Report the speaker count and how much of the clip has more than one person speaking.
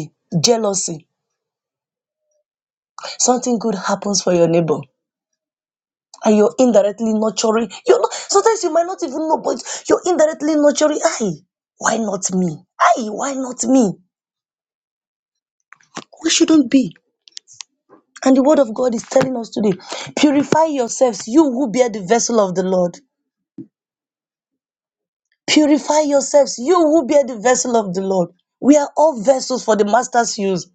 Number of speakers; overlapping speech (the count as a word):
one, no overlap